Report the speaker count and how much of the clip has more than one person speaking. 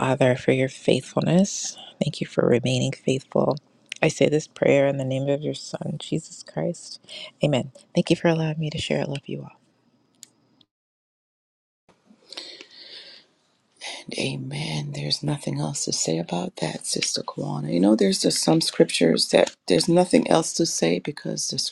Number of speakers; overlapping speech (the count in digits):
2, no overlap